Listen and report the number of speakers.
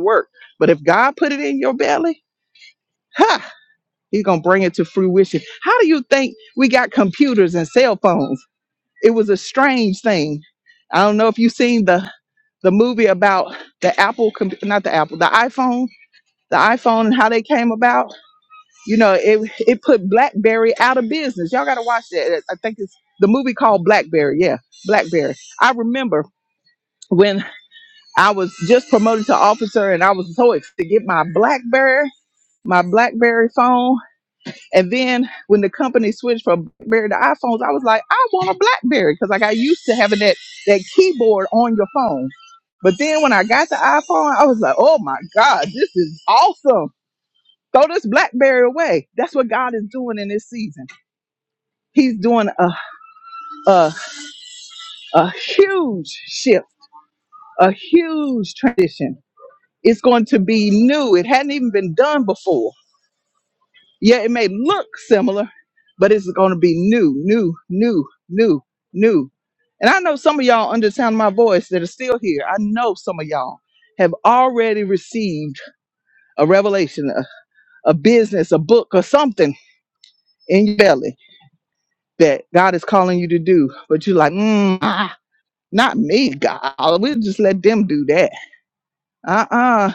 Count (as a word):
one